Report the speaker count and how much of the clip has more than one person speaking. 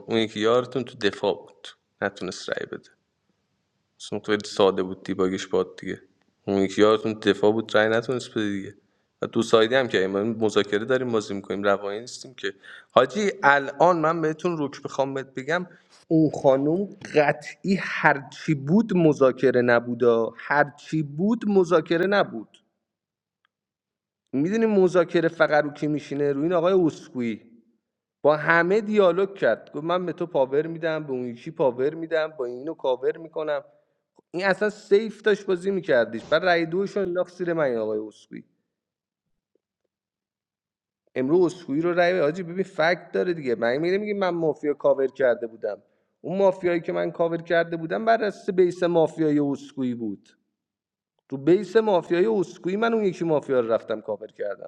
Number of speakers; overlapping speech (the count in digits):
1, no overlap